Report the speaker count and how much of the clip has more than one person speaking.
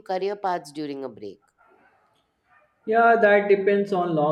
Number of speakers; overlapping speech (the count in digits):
2, no overlap